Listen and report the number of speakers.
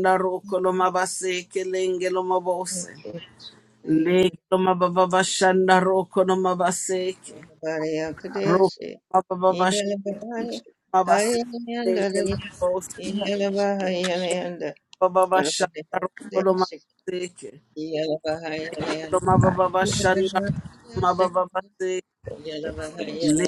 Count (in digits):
3